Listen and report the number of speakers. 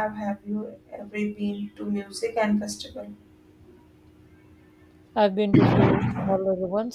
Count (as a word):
two